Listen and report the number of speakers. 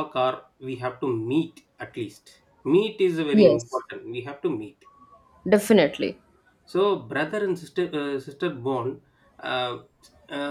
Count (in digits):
2